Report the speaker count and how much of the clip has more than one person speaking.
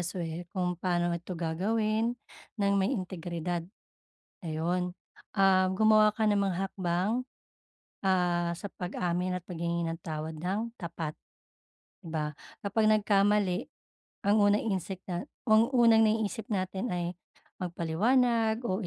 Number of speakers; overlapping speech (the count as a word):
one, no overlap